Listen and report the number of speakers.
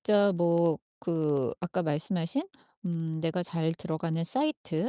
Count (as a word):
one